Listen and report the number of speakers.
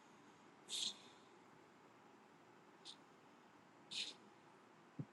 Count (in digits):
0